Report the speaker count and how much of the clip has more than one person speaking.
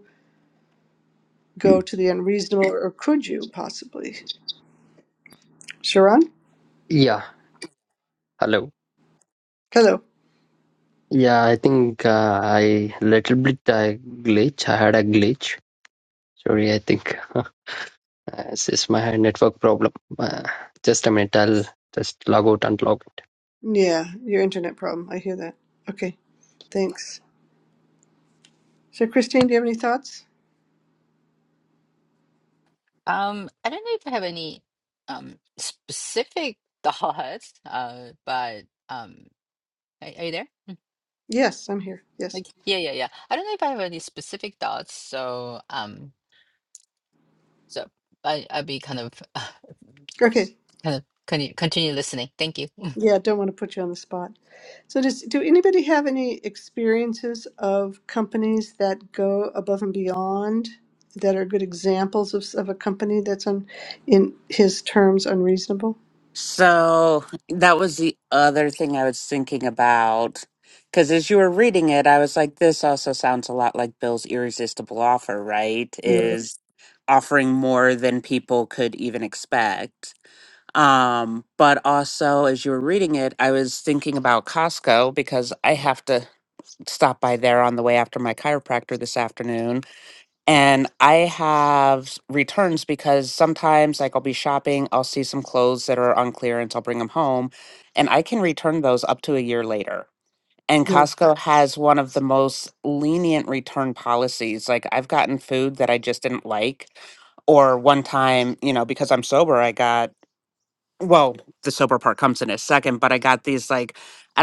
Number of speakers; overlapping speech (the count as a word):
four, under 1%